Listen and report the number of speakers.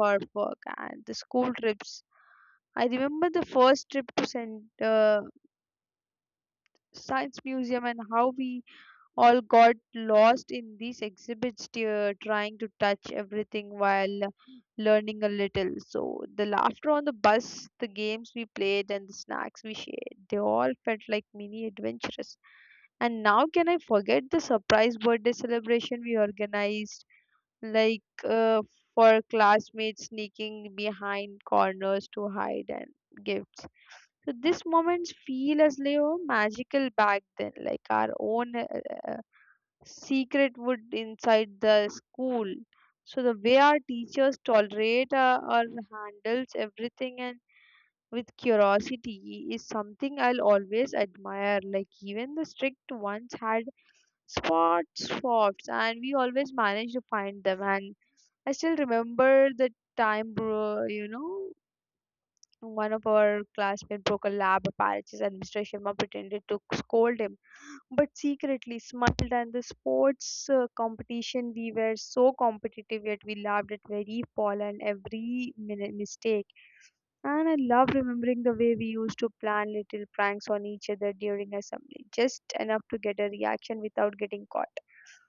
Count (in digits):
1